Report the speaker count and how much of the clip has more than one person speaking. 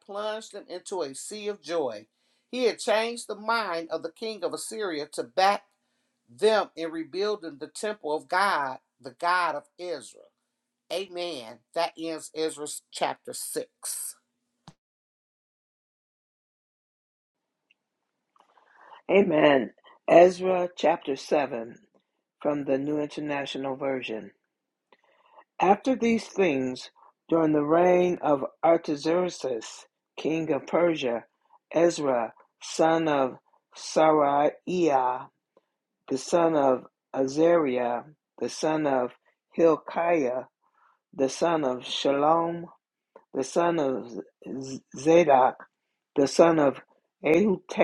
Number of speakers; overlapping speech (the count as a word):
two, no overlap